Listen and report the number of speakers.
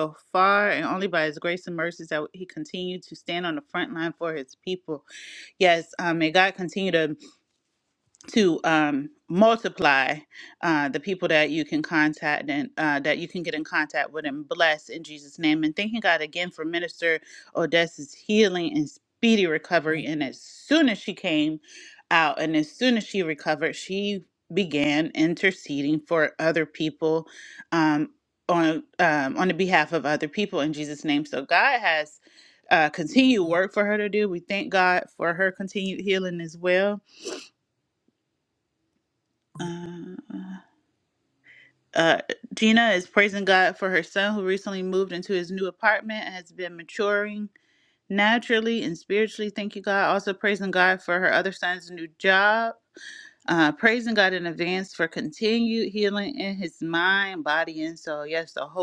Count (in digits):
1